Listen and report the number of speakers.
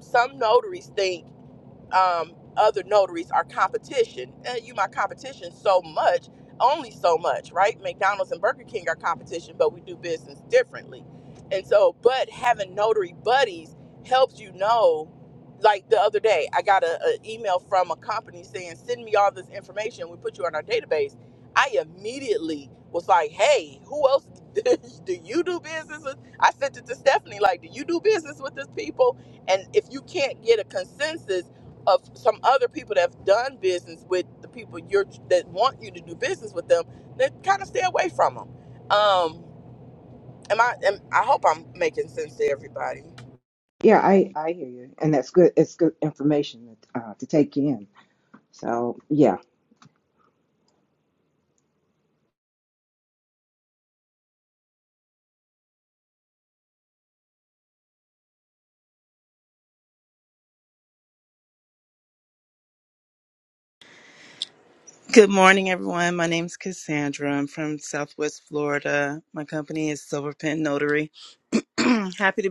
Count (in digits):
3